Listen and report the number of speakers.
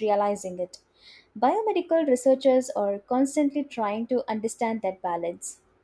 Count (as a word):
one